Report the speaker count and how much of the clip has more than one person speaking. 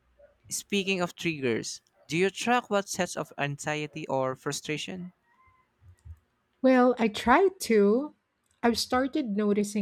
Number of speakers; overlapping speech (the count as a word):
two, no overlap